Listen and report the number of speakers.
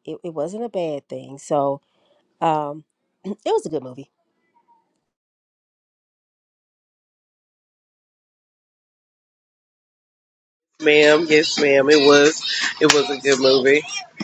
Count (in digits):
2